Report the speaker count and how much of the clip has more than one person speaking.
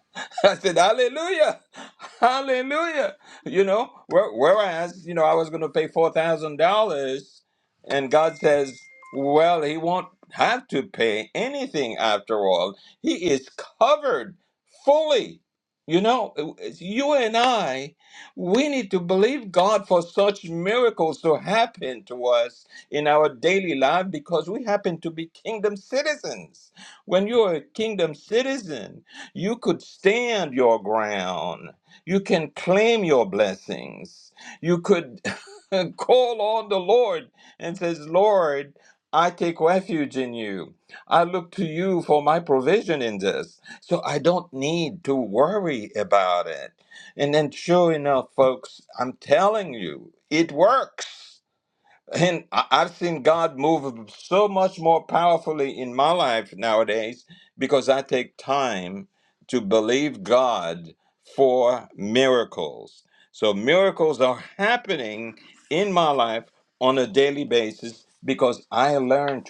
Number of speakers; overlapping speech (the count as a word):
one, no overlap